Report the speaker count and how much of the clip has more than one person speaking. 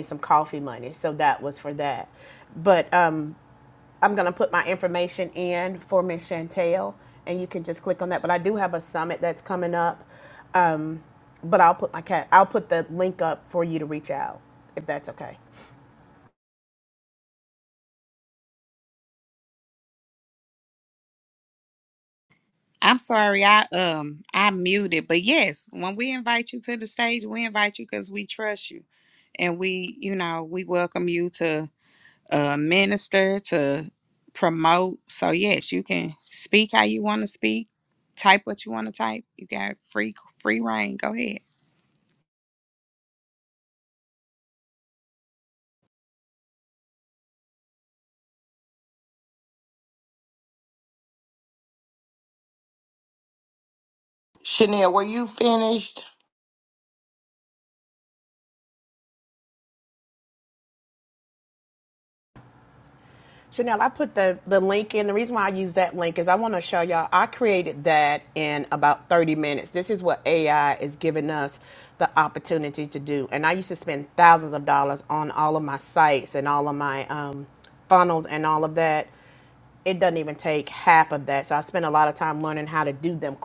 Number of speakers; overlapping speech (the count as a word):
three, no overlap